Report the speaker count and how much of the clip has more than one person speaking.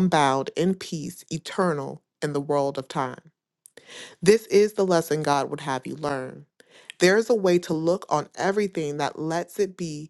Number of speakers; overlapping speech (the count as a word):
one, no overlap